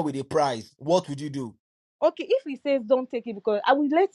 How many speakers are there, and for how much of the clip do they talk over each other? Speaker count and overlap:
2, no overlap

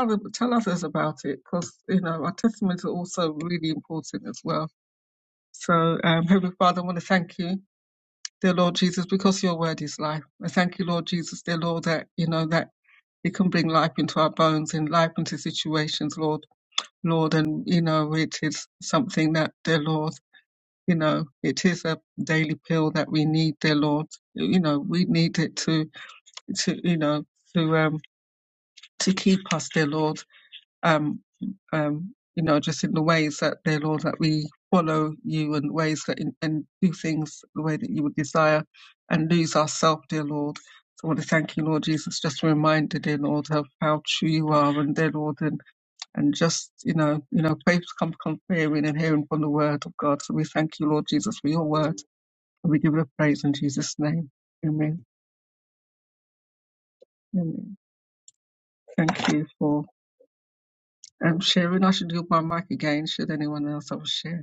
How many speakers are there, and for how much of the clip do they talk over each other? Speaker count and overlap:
1, no overlap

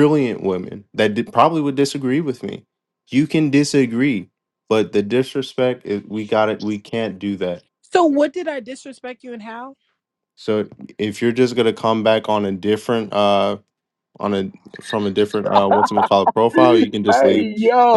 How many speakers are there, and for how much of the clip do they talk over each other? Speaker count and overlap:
3, about 5%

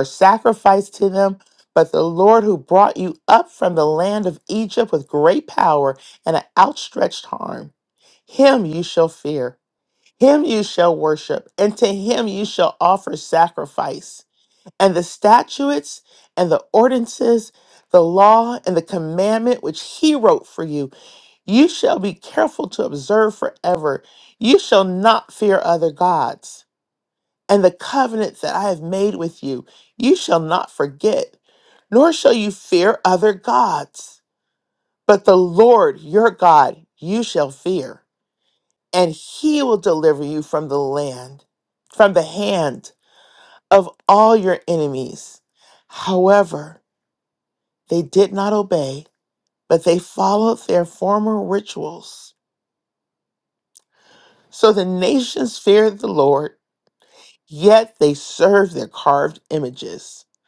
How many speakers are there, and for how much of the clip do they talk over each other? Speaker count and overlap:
1, no overlap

